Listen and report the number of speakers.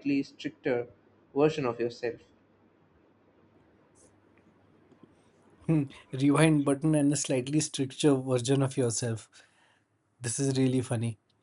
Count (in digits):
2